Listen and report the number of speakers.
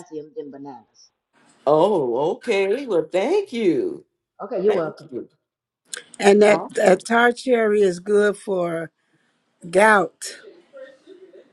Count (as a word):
three